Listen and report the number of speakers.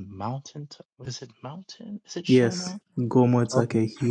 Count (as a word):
two